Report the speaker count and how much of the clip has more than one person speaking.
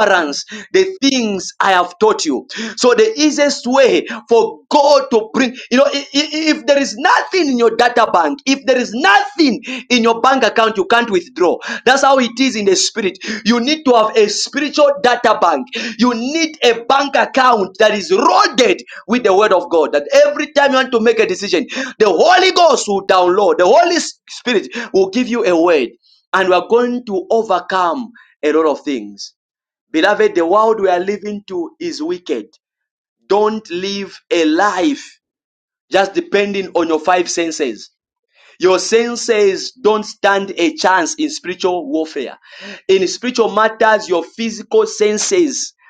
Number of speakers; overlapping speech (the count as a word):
one, no overlap